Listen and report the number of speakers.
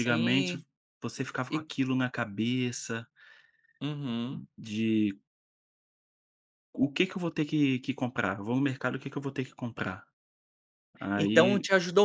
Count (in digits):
2